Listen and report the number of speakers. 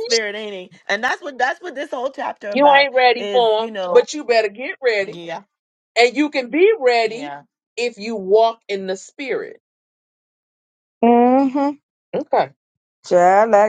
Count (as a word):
three